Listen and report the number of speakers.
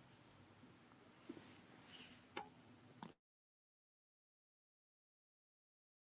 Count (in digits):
0